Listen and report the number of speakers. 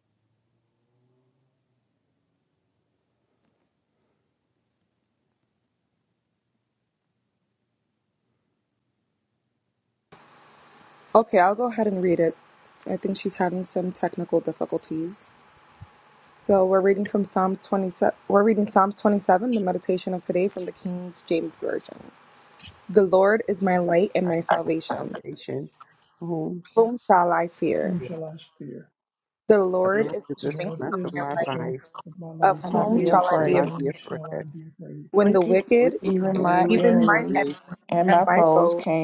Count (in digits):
4